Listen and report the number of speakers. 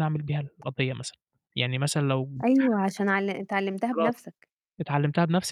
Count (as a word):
two